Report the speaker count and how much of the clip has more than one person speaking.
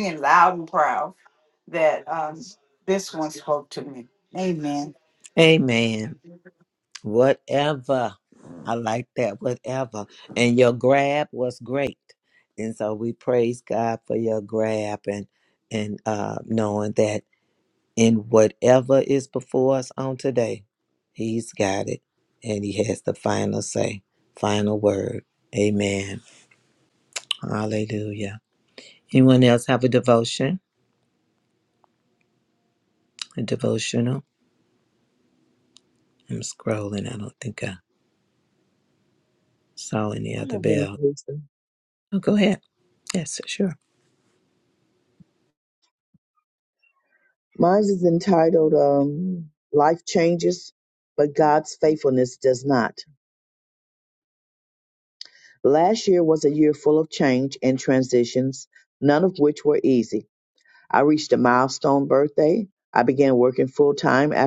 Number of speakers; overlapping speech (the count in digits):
3, about 1%